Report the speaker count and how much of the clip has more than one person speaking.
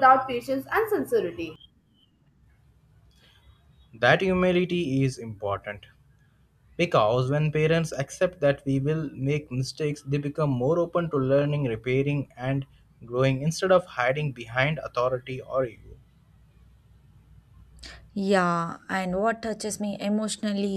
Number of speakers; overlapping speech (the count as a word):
three, no overlap